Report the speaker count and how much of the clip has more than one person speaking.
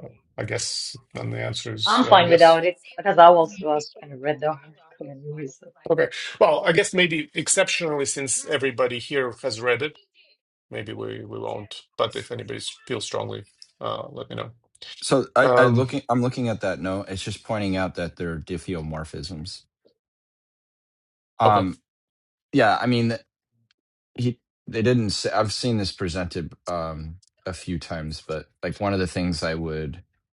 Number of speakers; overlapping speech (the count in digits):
3, about 4%